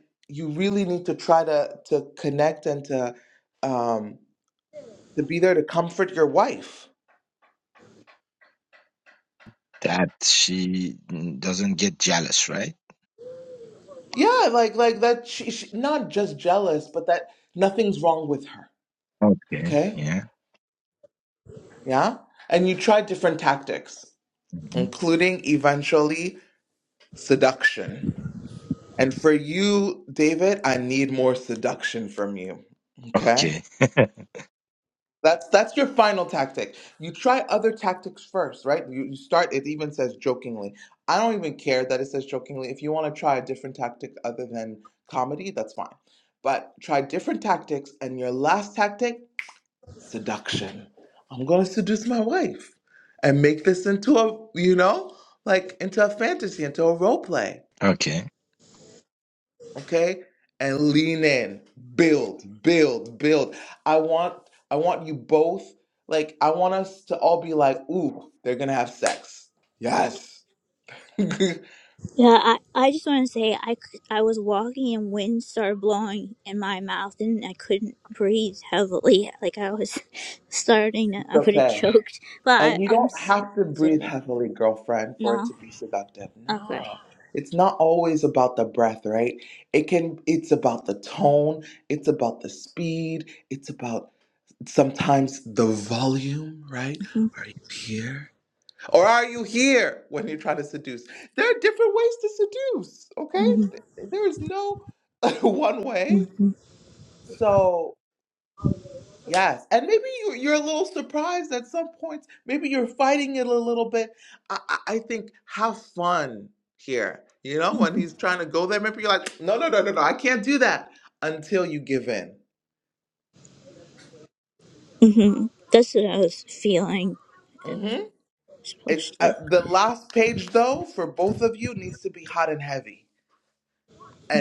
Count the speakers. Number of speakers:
three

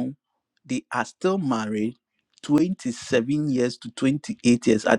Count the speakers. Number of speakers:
one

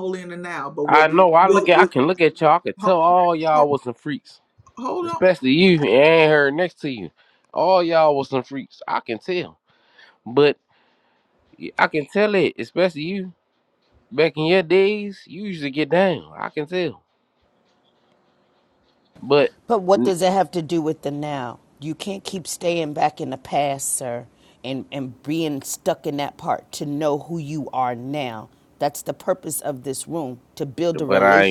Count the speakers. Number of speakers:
three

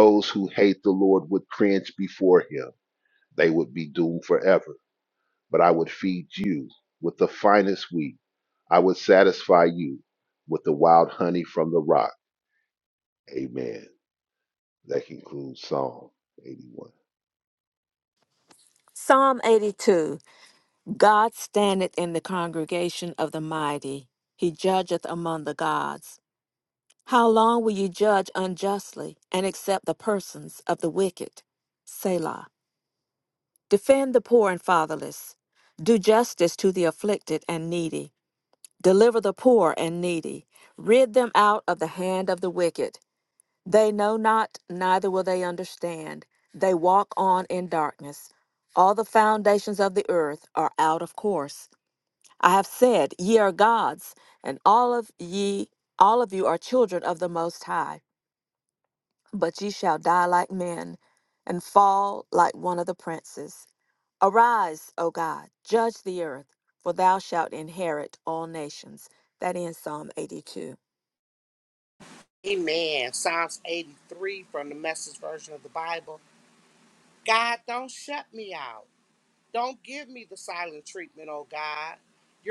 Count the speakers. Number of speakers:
three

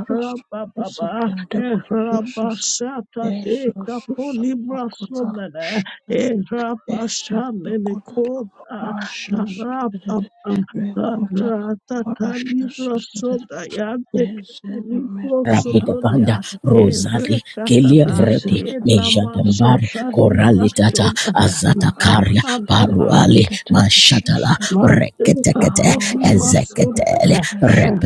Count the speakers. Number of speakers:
three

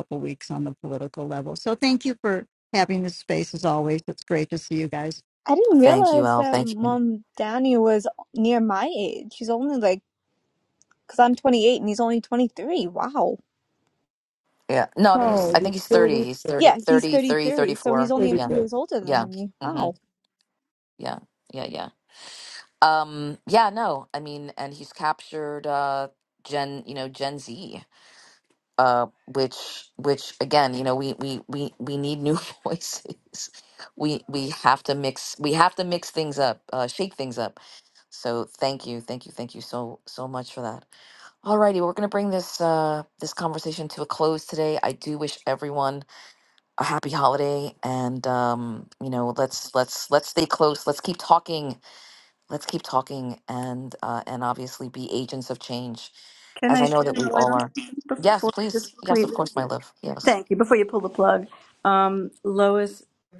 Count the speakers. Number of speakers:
four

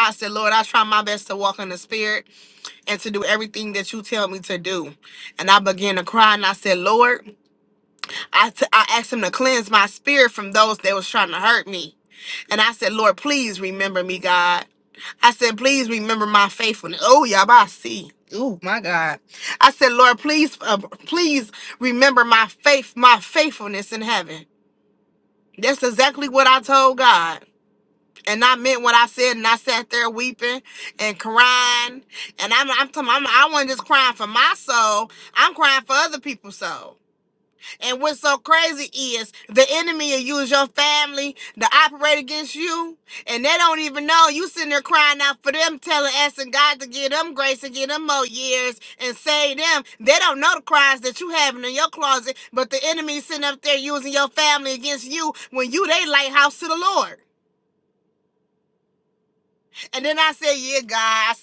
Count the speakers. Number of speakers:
one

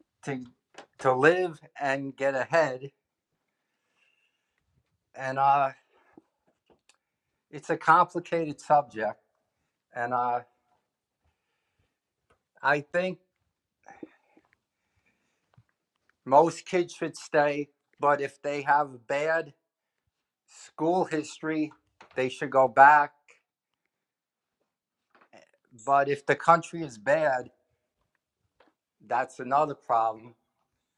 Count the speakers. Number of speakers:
one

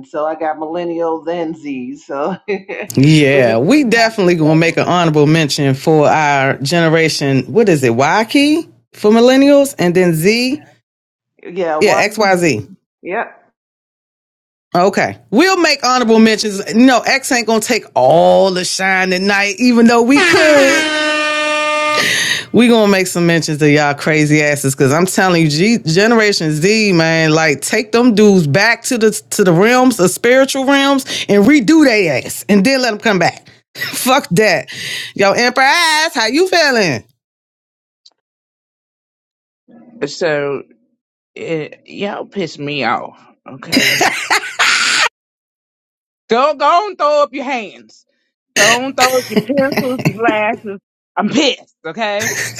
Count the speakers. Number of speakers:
three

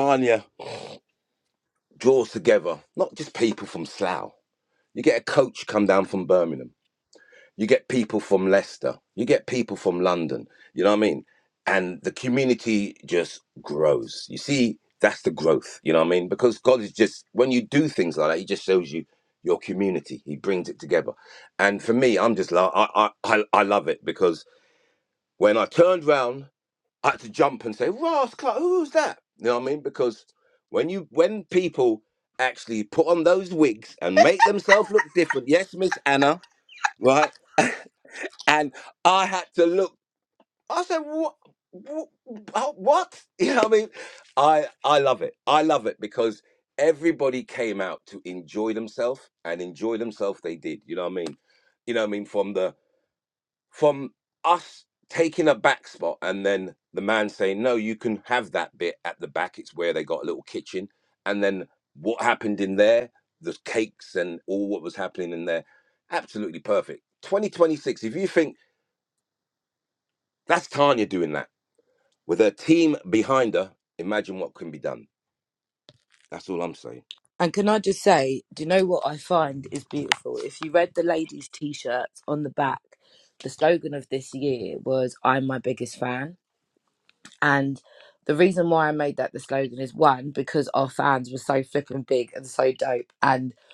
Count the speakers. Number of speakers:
two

